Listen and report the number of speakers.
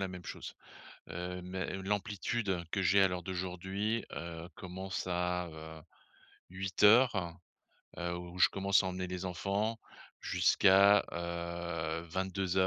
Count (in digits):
1